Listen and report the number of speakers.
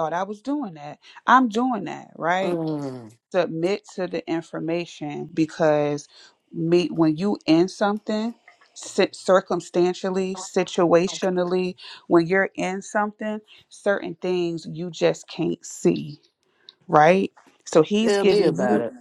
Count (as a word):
two